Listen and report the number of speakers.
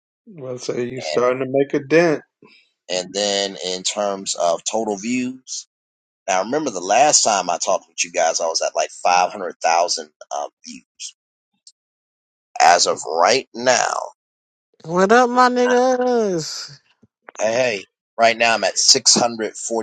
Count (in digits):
3